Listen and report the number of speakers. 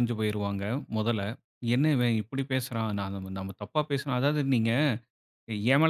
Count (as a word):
one